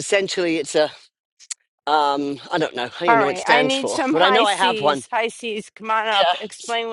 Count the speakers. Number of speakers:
2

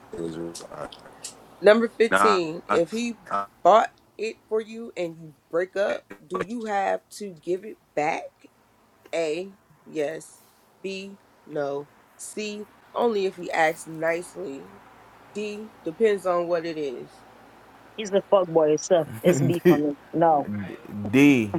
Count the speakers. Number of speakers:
4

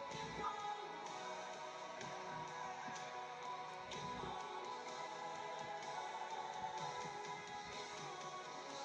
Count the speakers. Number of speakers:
0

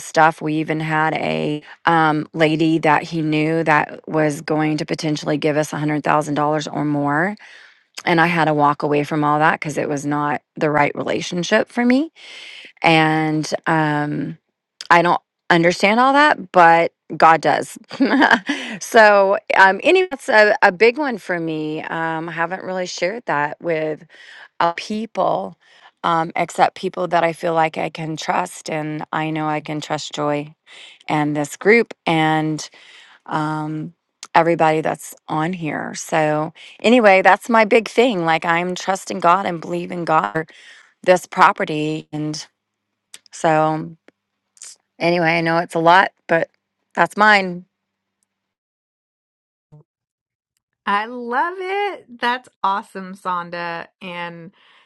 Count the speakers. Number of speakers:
2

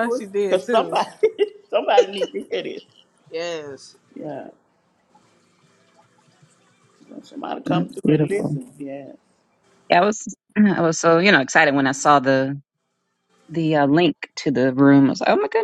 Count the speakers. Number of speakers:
3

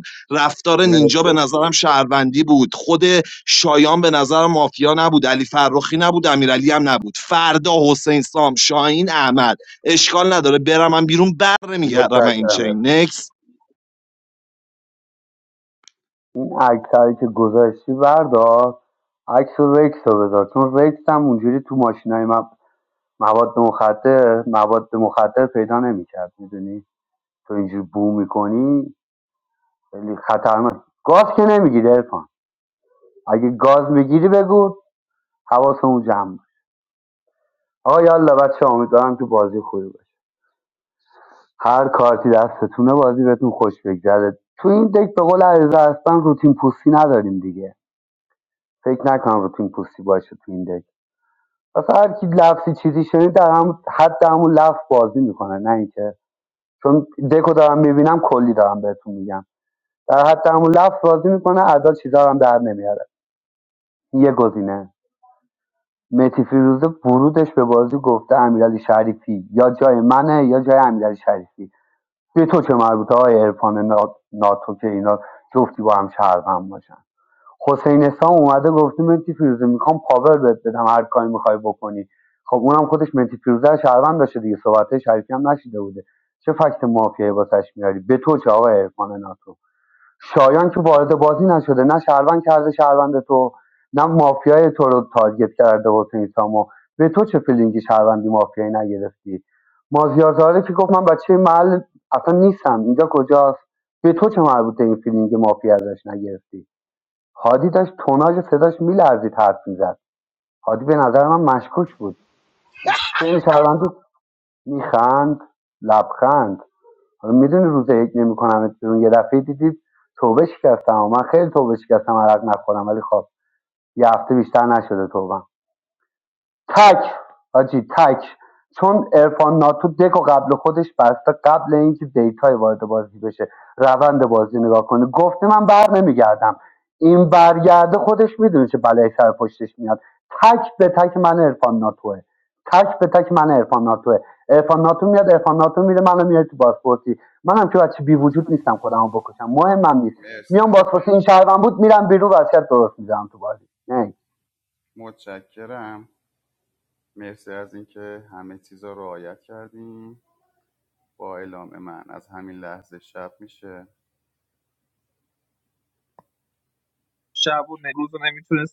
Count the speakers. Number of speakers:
4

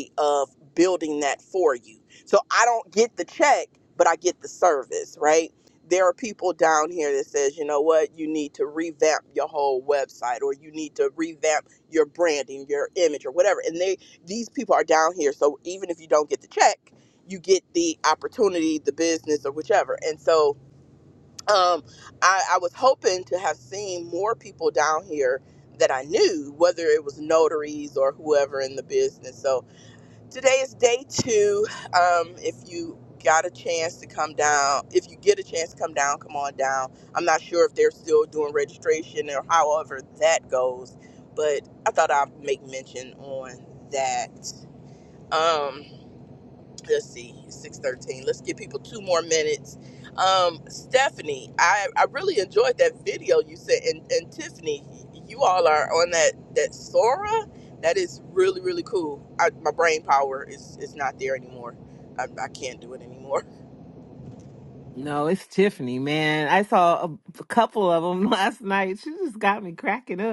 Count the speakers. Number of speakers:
2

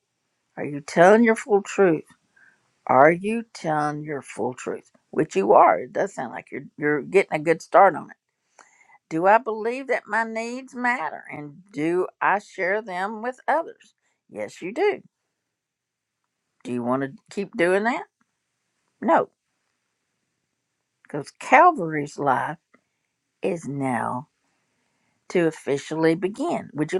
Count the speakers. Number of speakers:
1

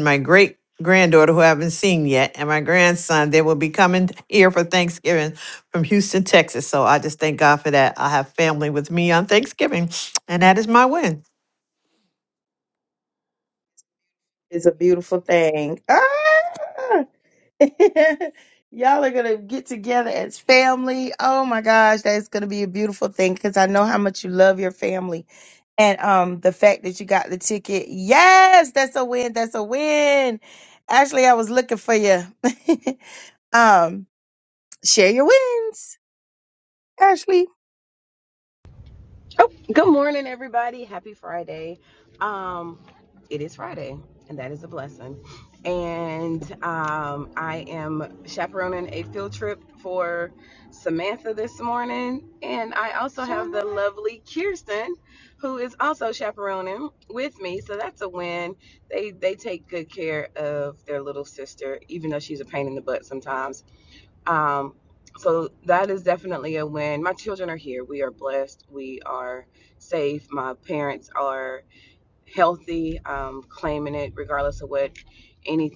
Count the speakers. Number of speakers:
3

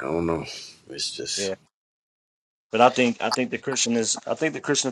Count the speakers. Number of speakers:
2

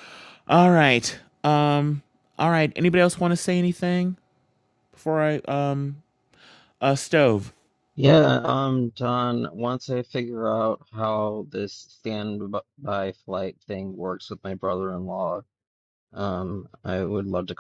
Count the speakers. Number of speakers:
2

